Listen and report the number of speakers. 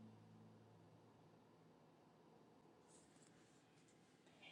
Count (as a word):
zero